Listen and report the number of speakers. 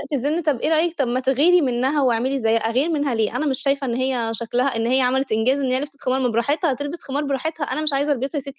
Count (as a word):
one